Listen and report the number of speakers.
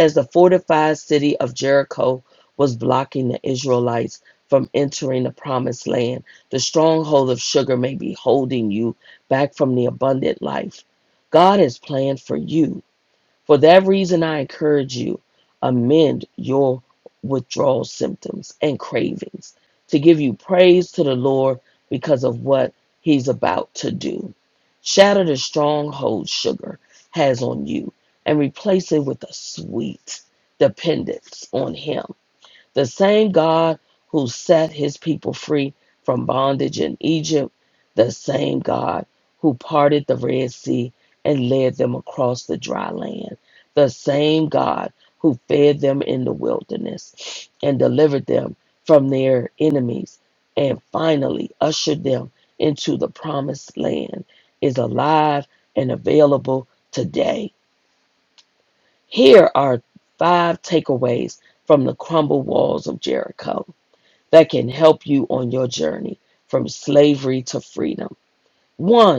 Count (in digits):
1